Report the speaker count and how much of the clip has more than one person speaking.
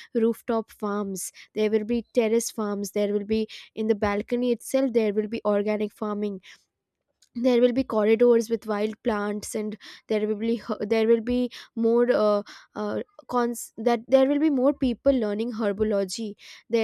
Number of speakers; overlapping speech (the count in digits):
1, no overlap